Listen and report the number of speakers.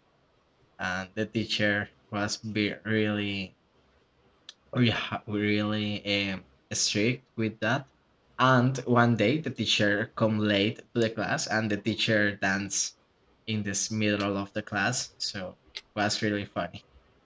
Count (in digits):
1